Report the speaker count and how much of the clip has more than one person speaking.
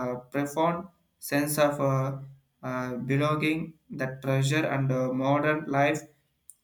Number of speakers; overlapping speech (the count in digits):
1, no overlap